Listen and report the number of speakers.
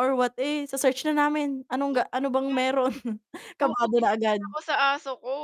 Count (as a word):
two